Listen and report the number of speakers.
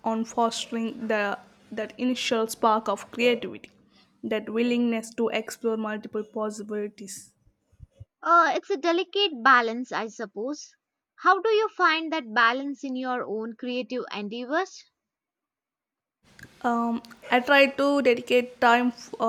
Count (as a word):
two